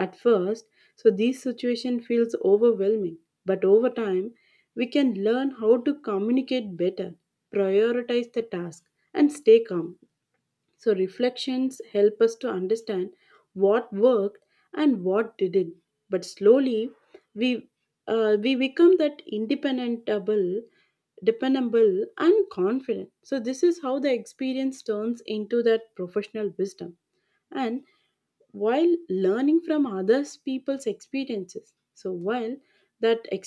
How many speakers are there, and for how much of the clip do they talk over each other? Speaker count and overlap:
1, no overlap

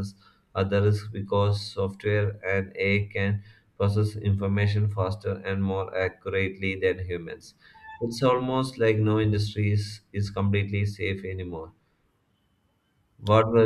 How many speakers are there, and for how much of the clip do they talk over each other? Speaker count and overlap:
1, no overlap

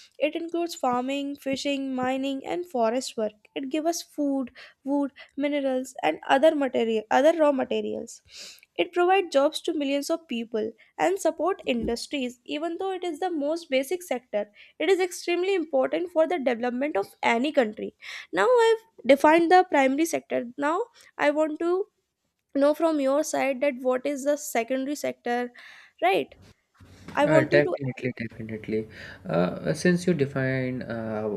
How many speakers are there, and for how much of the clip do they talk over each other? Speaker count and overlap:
2, about 2%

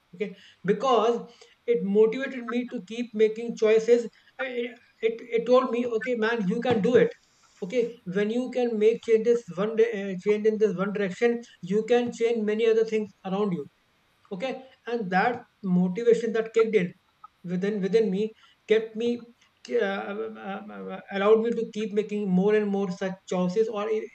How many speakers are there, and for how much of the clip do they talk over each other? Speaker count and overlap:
1, no overlap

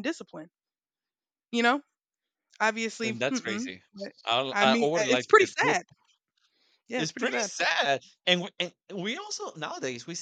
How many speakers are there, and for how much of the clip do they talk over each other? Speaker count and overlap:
2, about 25%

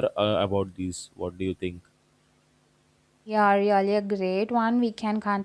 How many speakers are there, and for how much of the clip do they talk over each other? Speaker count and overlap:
2, no overlap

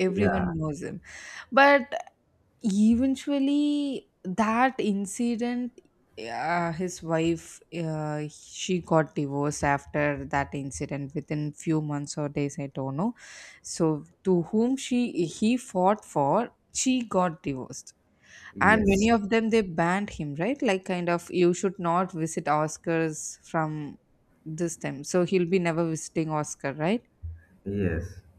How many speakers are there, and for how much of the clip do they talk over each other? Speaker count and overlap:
2, about 3%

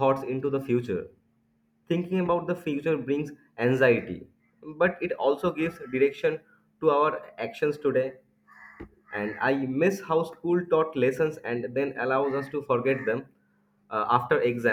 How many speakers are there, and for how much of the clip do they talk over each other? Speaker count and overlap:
1, no overlap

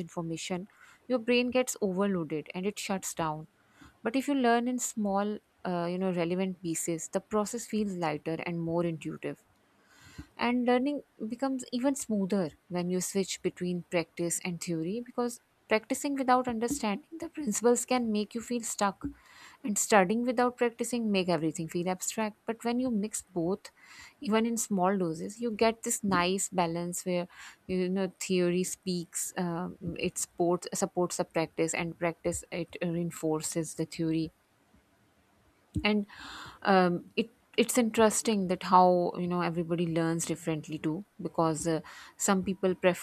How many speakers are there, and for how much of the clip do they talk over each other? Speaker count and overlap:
1, no overlap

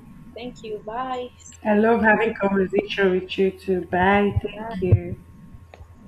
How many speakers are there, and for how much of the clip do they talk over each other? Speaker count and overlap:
2, about 6%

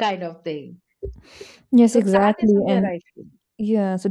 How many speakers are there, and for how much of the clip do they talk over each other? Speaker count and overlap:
2, about 24%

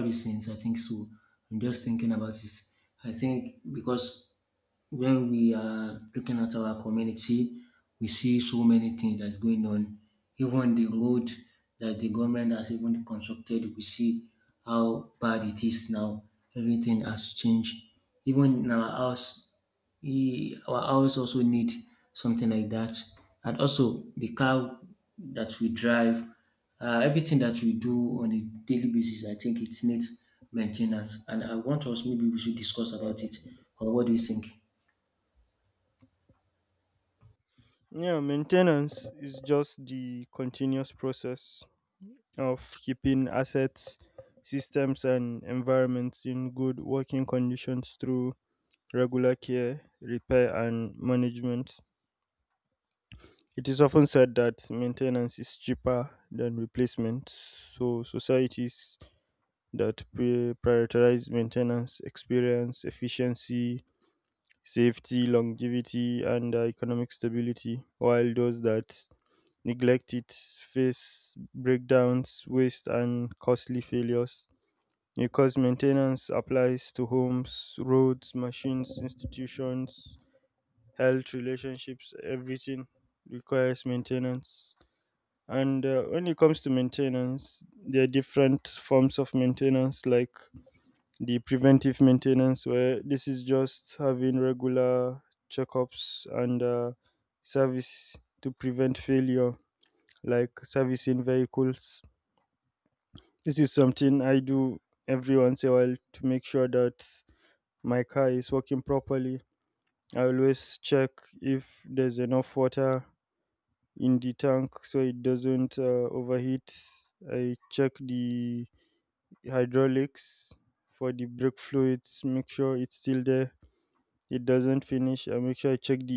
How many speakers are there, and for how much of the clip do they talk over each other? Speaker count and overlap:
2, no overlap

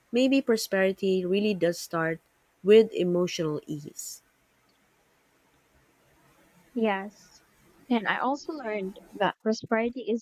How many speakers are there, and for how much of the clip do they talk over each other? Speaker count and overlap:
2, no overlap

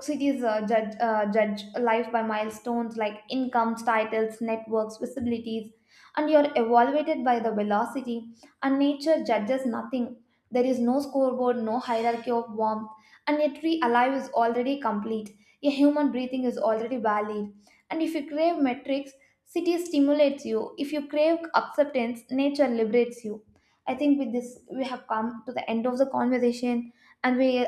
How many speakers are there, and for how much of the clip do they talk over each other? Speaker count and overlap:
1, no overlap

